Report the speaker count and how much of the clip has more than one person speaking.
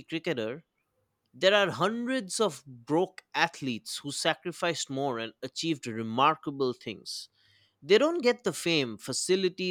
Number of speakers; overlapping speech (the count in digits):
1, no overlap